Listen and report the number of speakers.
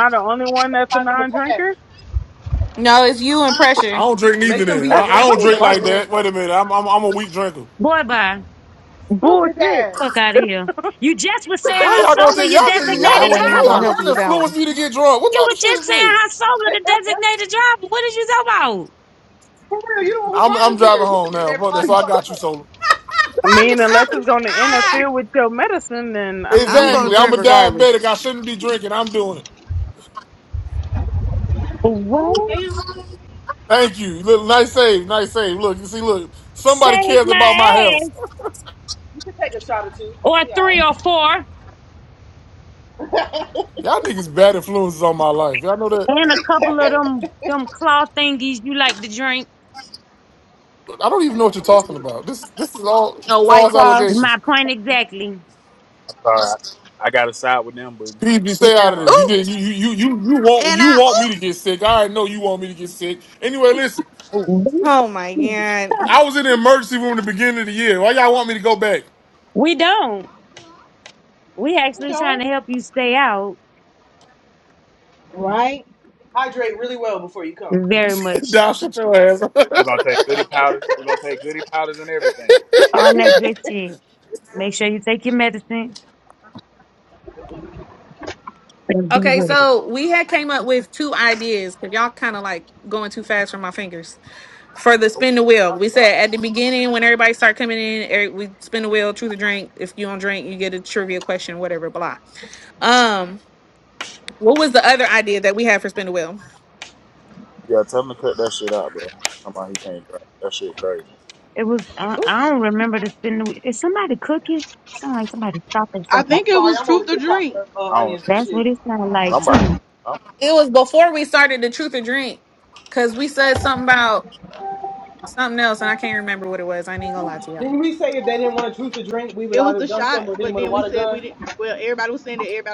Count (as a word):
eight